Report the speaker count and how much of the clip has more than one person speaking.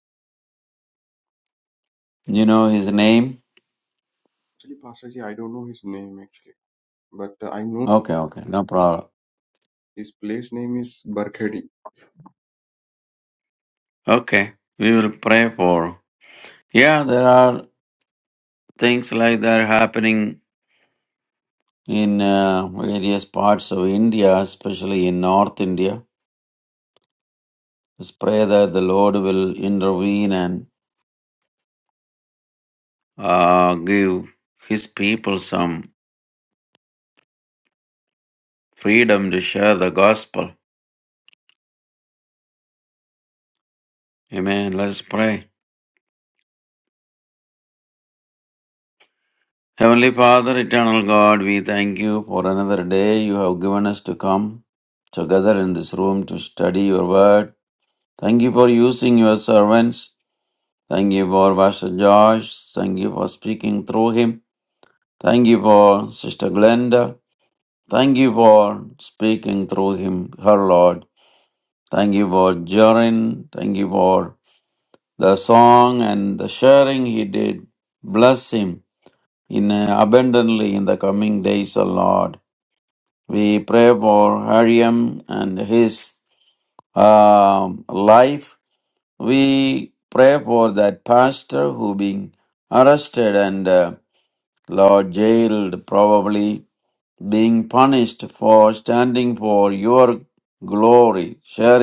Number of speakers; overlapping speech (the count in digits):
2, under 1%